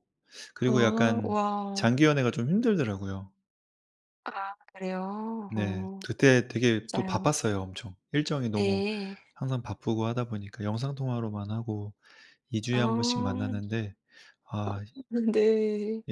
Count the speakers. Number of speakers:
two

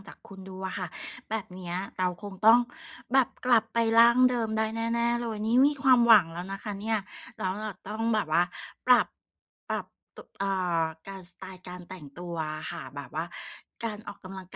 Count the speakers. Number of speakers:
one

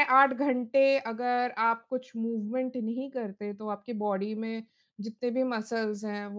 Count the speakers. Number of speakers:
one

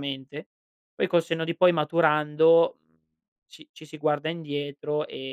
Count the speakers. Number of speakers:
one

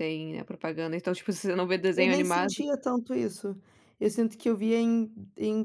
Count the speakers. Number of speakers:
two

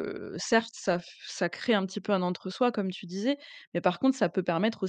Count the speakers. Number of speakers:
one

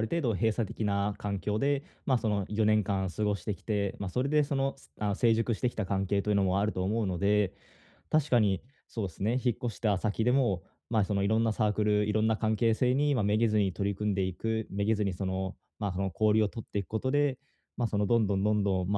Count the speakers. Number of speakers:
one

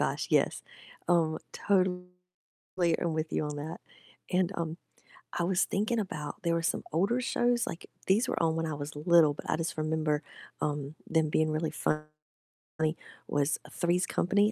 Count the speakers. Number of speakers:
one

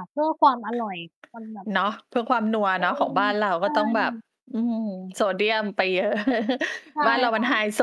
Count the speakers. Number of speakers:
two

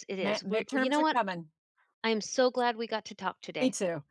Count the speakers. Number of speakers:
two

